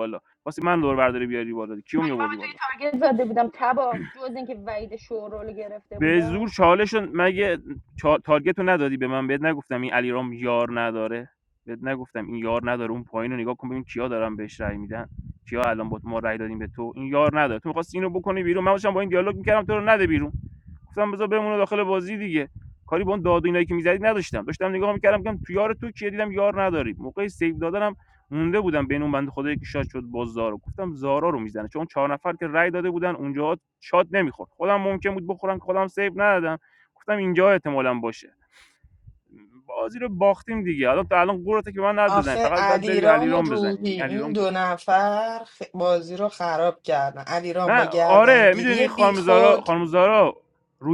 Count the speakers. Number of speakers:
3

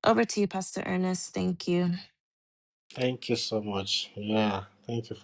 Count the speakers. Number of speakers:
2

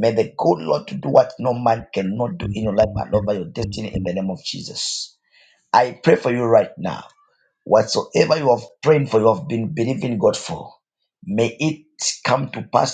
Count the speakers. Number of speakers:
1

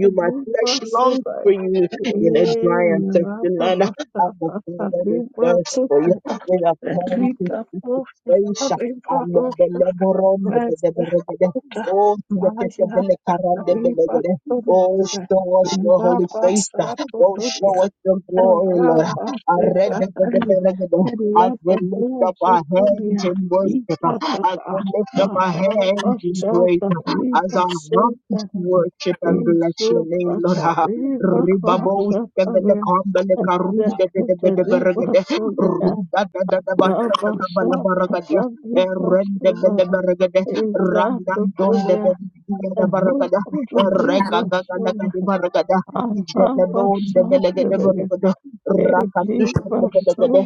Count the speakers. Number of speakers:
2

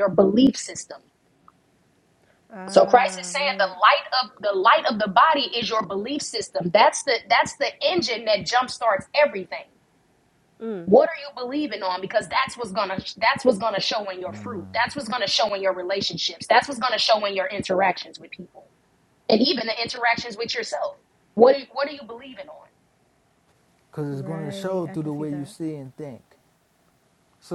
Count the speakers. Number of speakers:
3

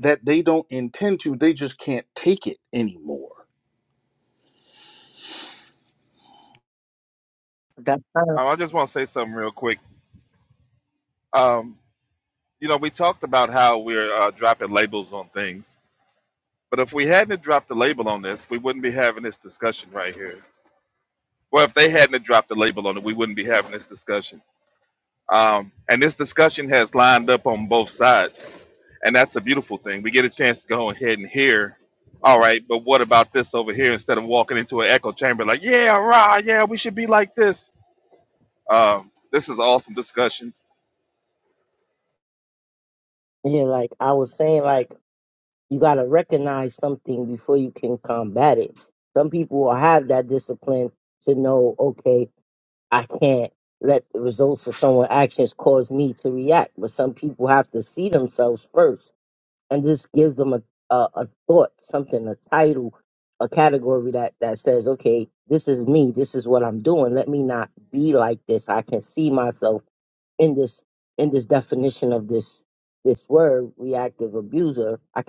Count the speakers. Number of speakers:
3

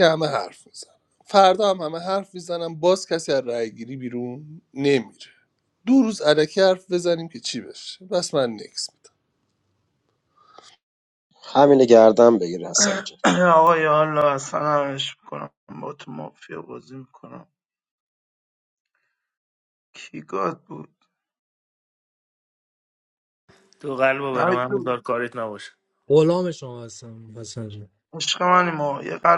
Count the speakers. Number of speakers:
5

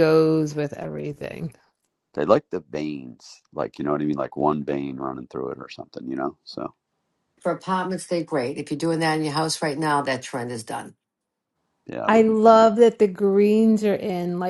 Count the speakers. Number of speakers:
3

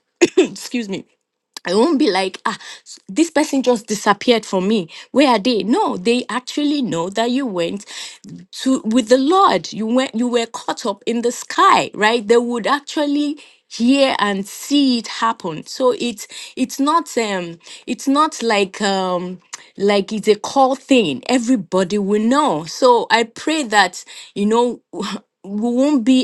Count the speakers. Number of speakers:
1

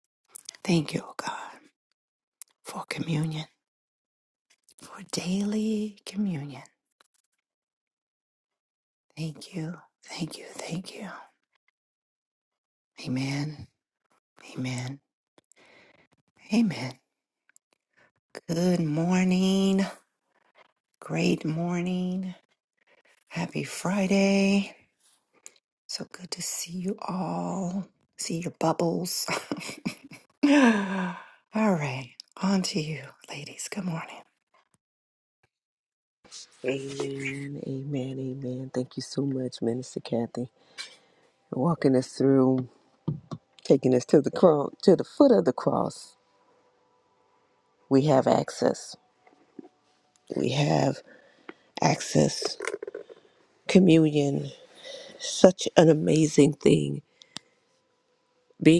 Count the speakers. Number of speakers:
2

